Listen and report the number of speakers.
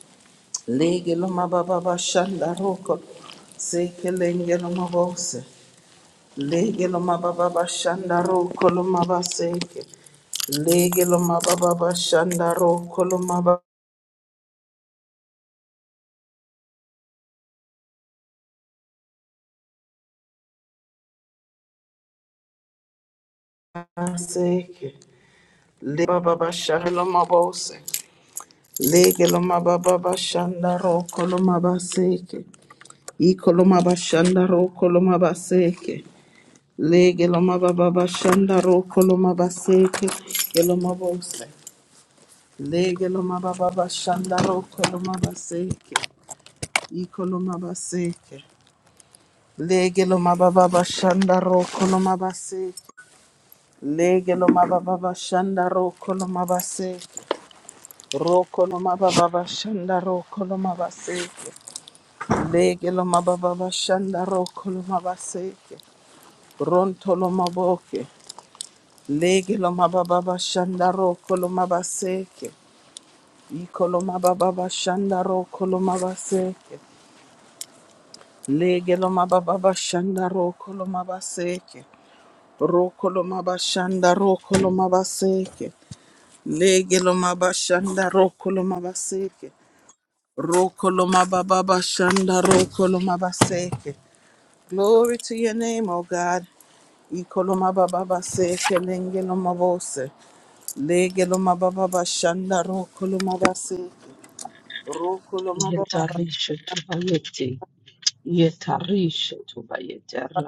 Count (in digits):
2